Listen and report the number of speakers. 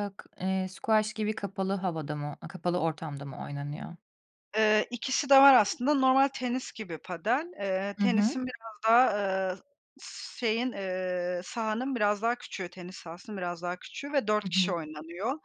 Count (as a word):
two